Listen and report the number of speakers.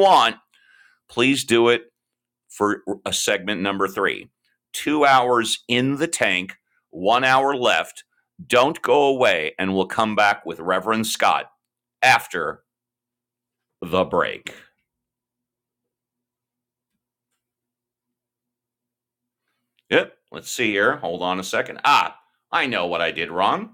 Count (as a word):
one